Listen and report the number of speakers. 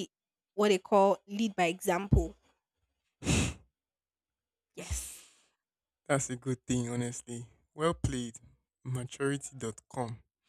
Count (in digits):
2